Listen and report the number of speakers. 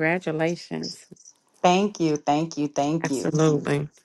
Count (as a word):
two